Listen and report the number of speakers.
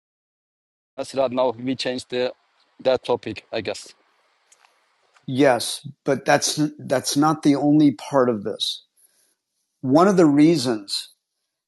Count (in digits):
2